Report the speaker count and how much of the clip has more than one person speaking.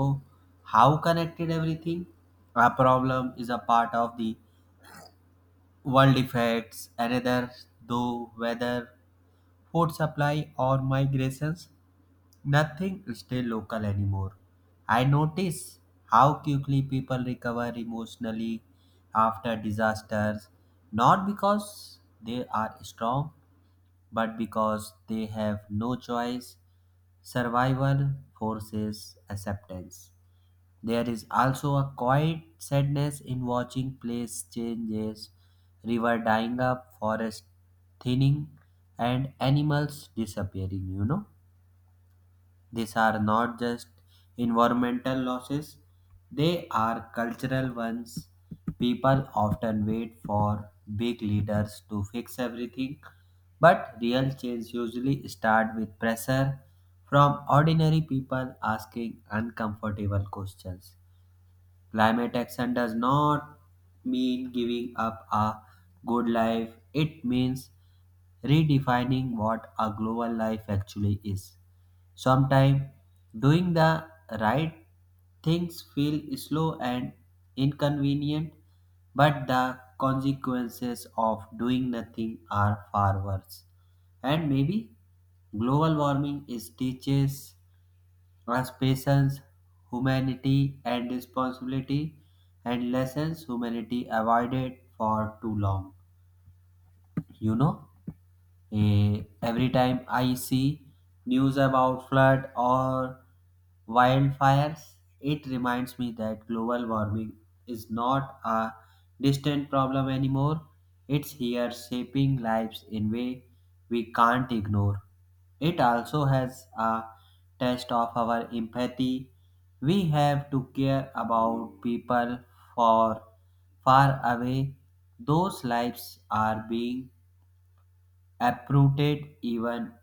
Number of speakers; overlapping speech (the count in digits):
1, no overlap